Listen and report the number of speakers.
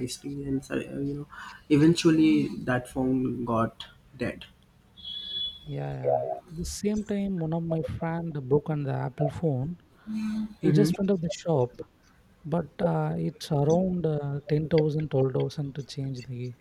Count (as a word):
two